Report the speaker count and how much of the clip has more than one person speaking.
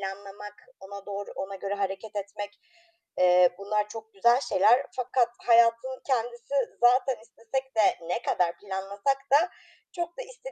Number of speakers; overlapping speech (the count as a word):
one, no overlap